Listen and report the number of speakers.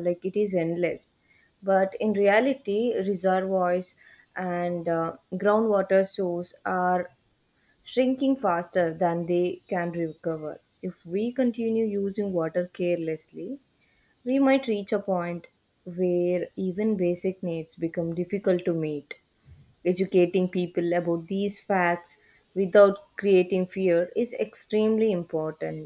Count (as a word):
one